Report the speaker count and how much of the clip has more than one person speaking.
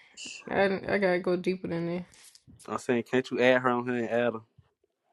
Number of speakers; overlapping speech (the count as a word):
two, no overlap